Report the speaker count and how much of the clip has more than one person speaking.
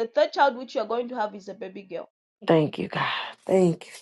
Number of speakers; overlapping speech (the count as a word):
two, no overlap